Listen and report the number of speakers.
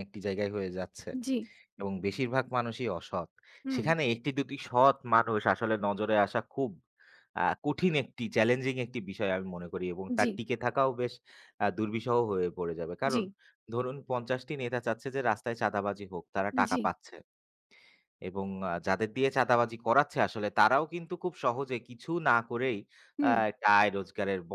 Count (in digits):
2